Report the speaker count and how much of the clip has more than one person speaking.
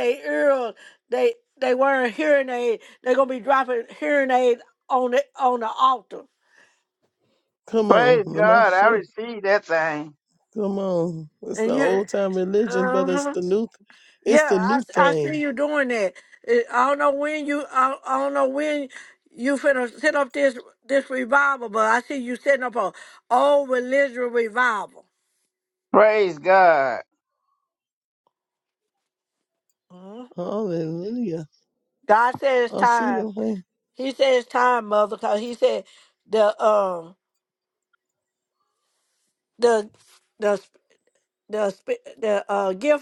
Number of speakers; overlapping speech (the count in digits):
3, about 9%